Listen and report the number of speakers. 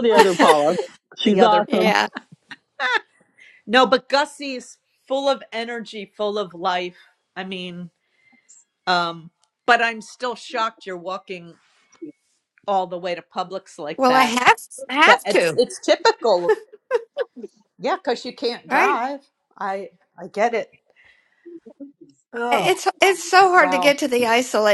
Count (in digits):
3